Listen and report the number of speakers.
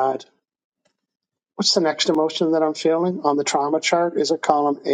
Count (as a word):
one